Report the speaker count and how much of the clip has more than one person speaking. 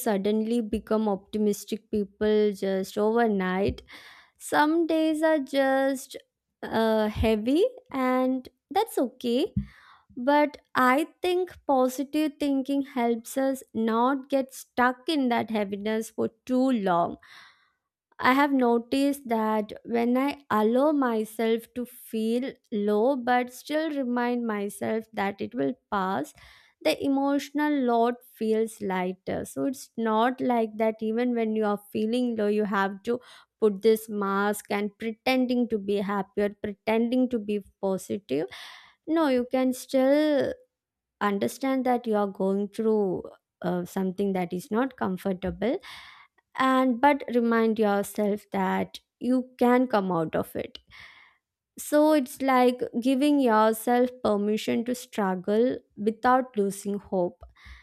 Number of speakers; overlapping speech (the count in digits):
1, no overlap